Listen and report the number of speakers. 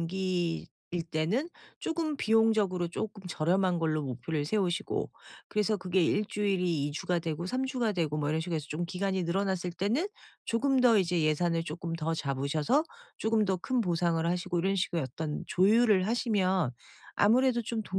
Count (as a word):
one